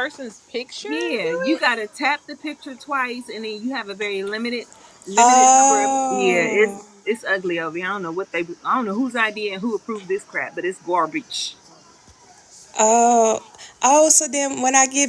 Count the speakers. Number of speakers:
3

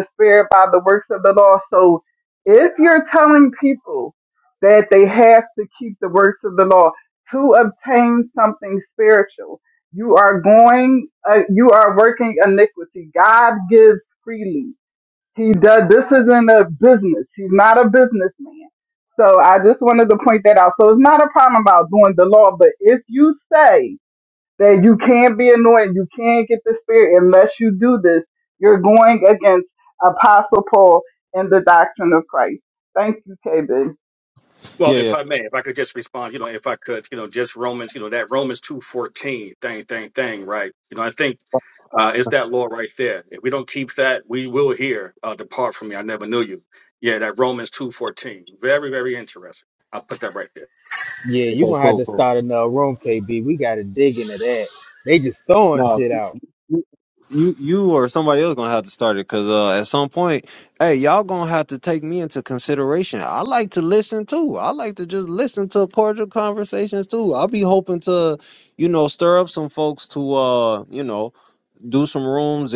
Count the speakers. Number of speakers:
4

